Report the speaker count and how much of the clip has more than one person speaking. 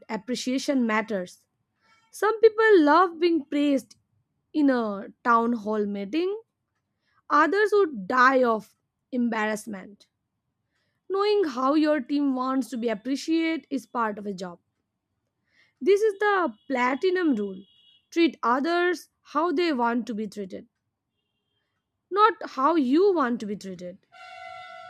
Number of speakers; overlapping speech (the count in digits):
1, no overlap